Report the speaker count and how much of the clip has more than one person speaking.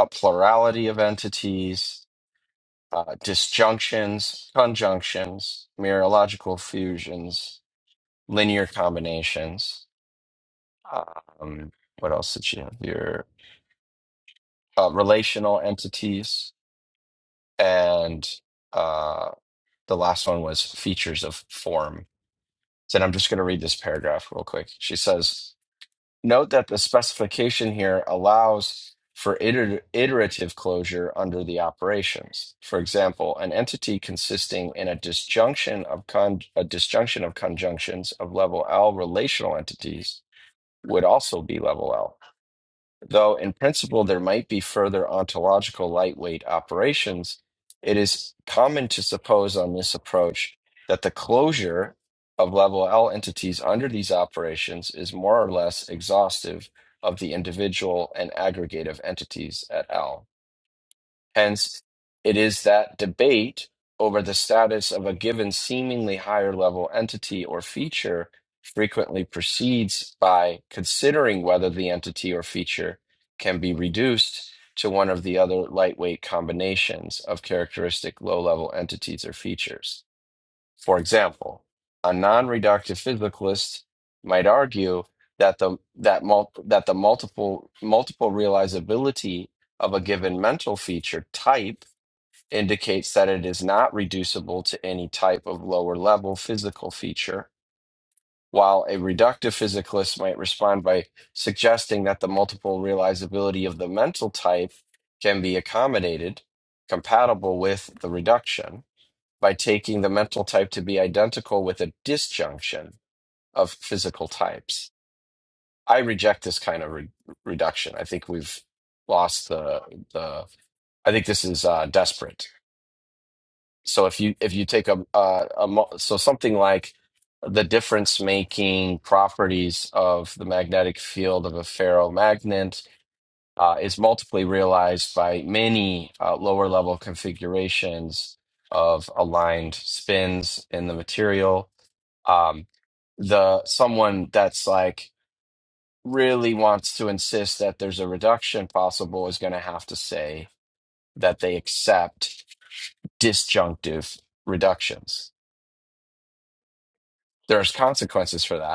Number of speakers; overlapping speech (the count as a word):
one, no overlap